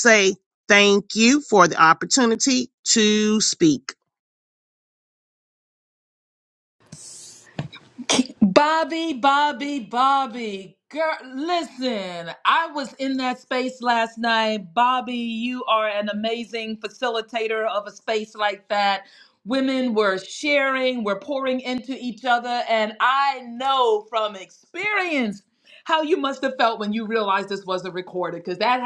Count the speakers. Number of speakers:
2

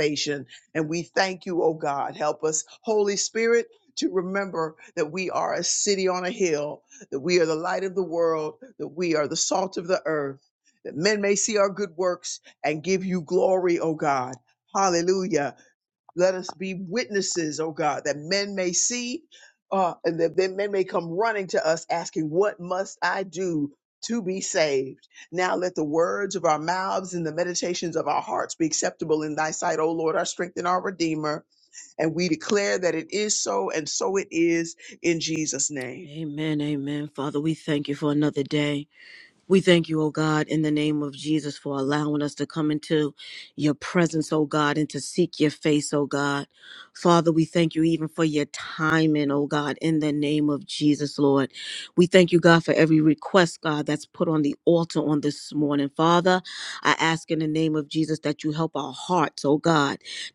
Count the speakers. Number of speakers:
2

